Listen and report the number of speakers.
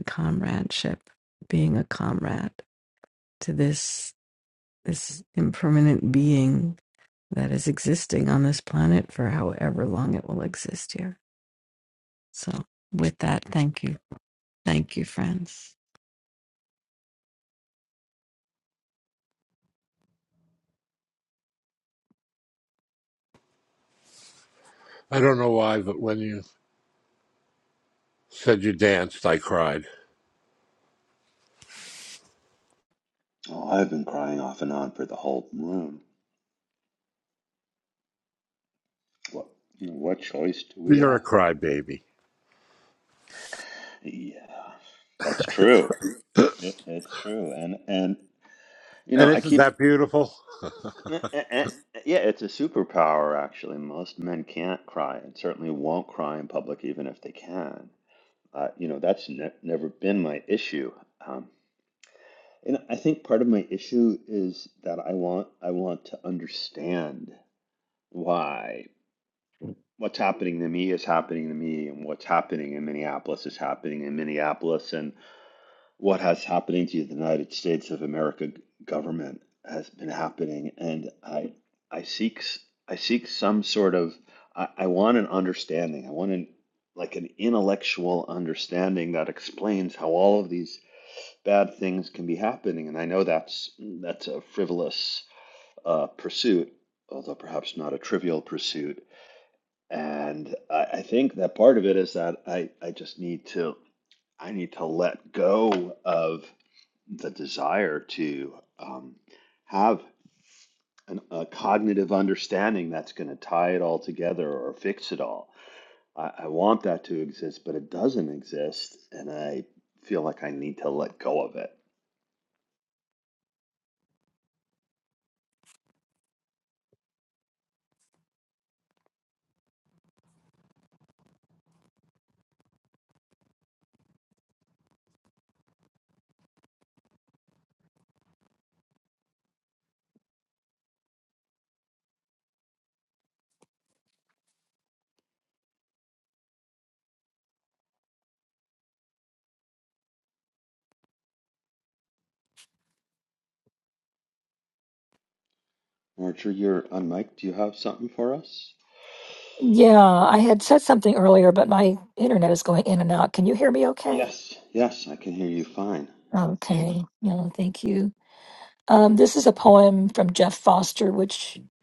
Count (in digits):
4